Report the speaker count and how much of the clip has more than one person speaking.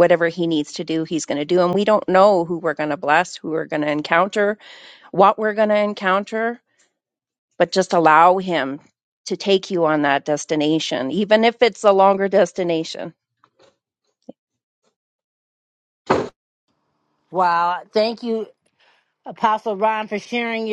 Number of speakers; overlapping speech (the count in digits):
2, no overlap